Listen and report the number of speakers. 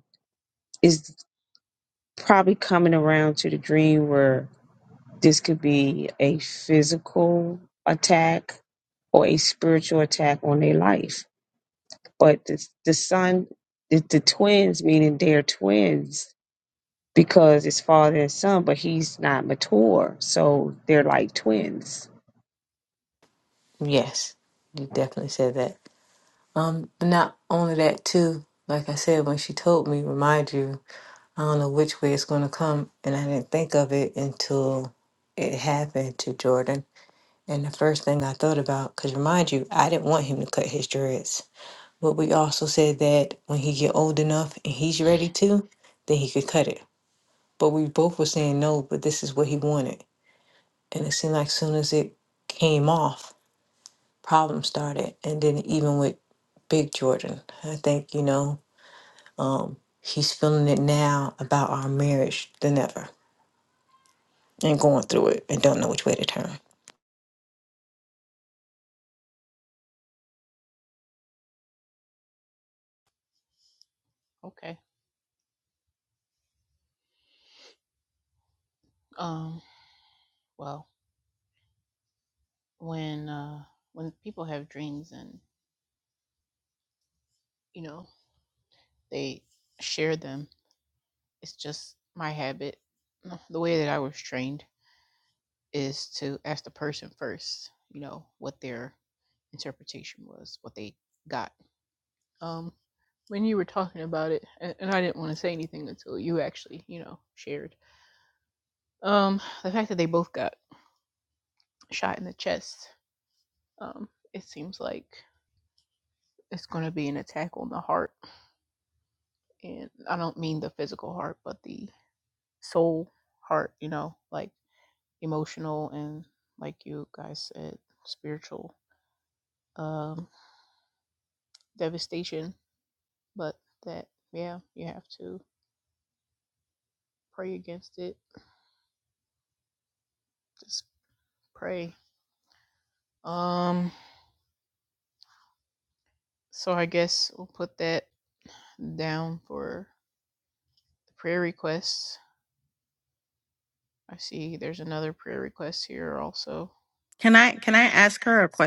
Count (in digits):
4